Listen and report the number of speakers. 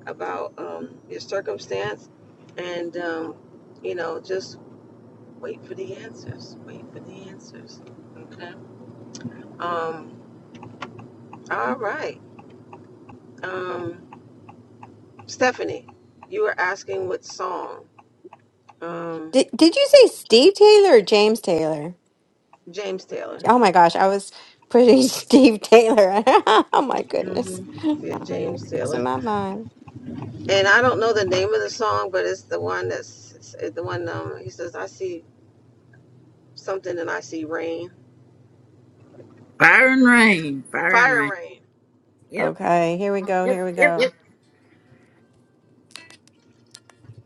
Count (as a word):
three